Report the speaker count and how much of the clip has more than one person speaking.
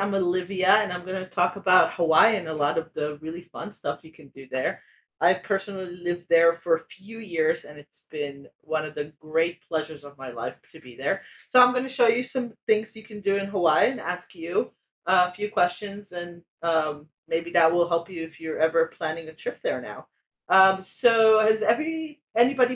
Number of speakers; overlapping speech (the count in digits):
1, no overlap